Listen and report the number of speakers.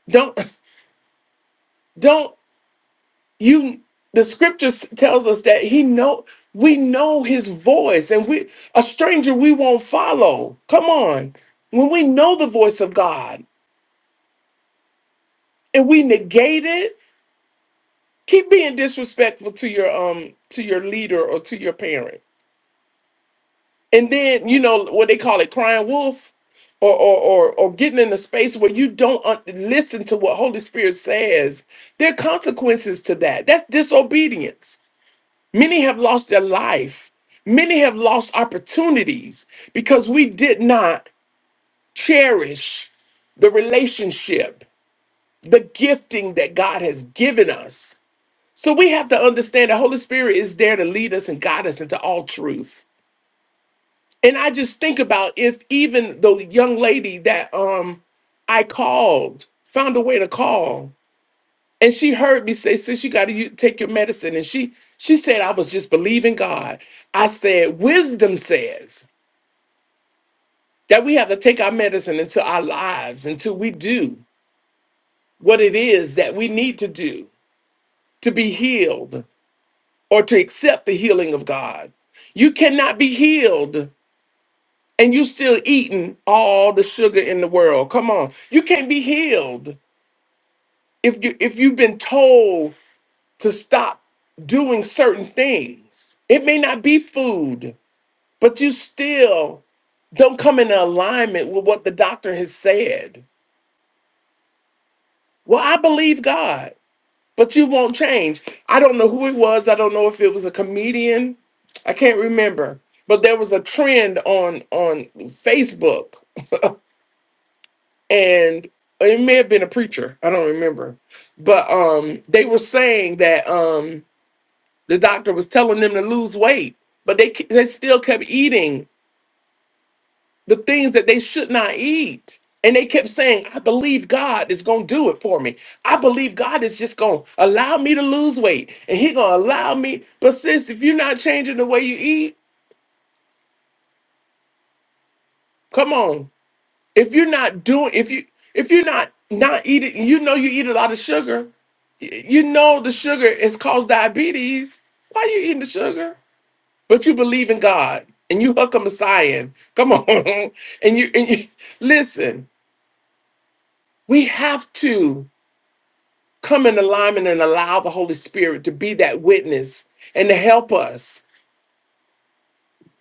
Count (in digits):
1